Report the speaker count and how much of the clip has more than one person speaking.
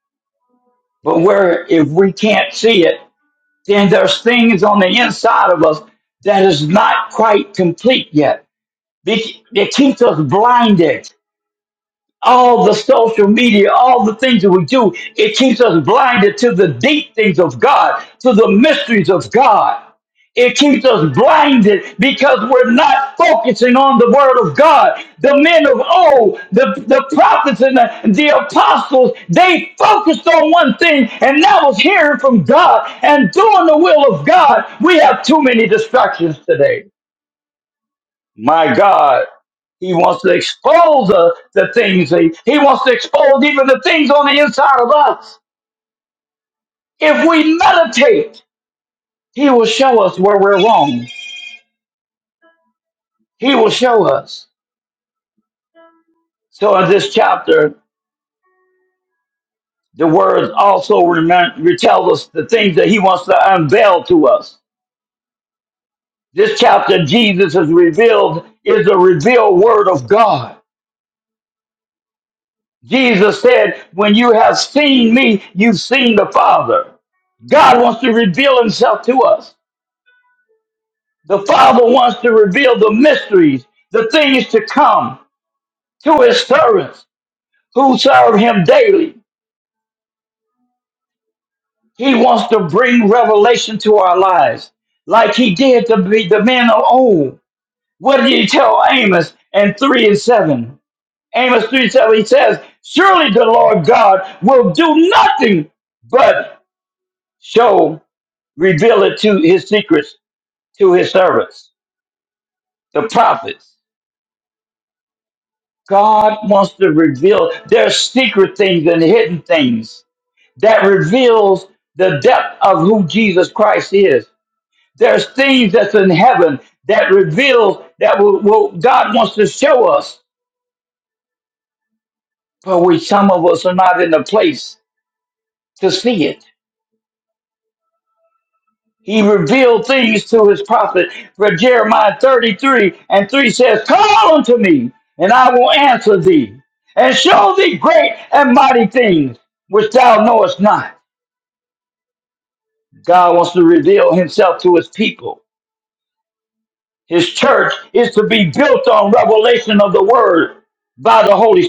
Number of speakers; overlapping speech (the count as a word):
one, no overlap